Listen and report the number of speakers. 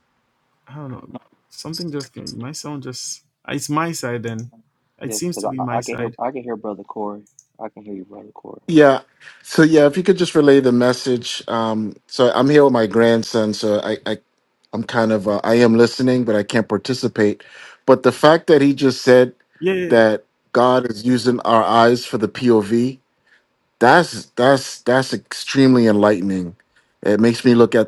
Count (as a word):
three